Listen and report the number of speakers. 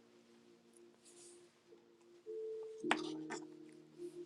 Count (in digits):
0